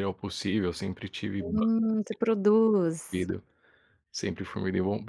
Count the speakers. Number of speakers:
two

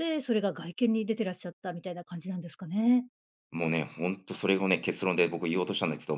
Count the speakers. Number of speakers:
two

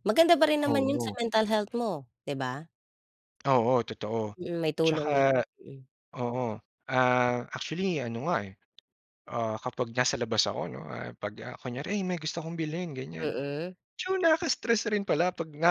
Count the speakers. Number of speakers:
two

